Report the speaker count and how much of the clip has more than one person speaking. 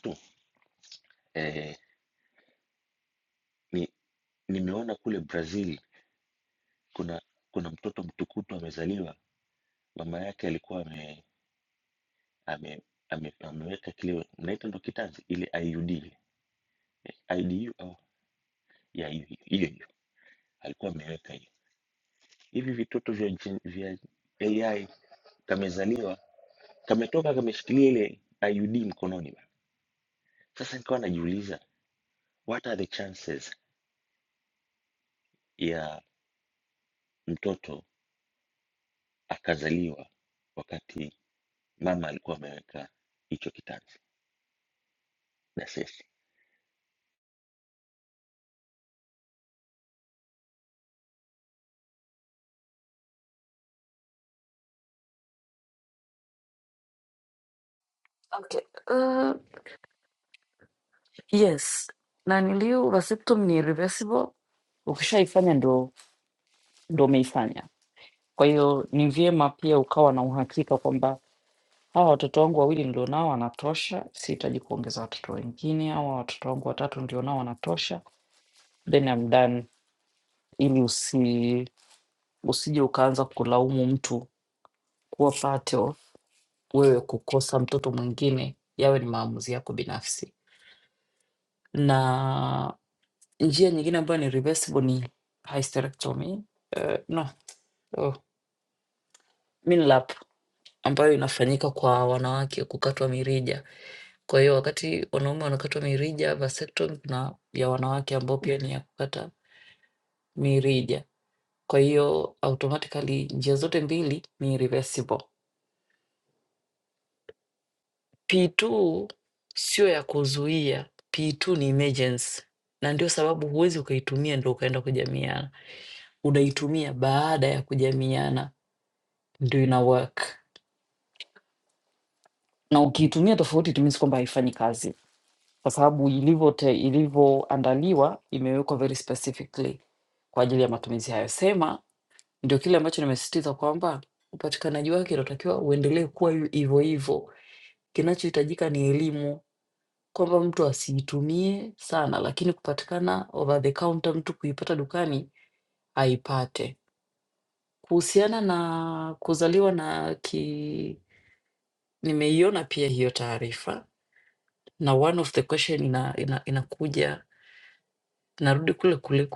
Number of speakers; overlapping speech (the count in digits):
2, no overlap